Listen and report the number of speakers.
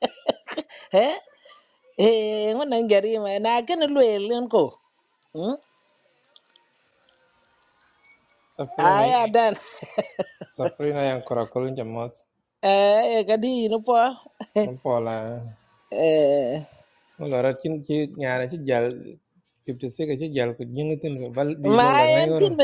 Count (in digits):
2